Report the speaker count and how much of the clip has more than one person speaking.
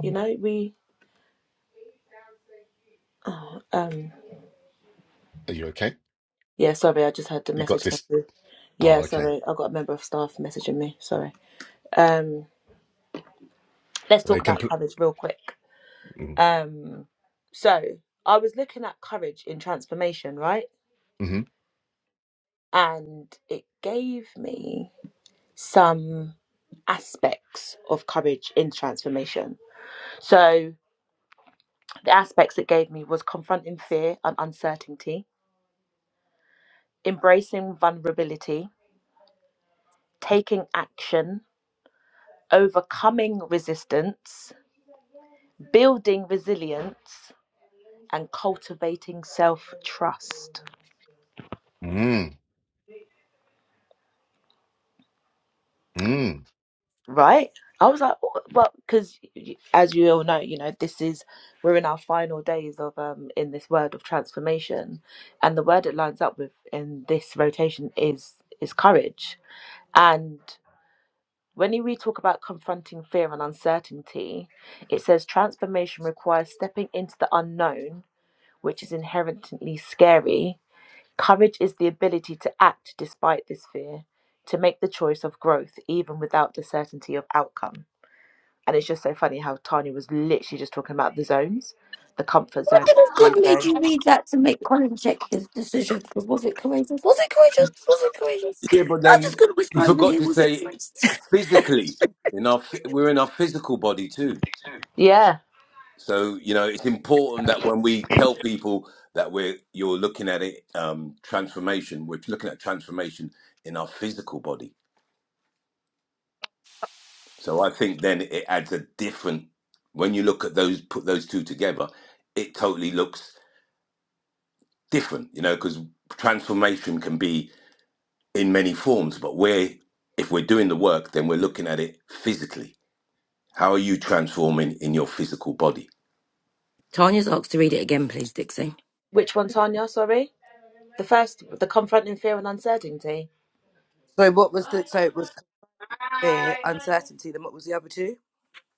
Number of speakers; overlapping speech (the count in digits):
5, about 3%